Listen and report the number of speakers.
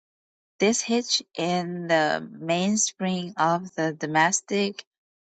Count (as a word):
one